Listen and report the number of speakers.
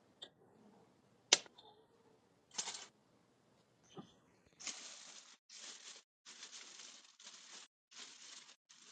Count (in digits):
0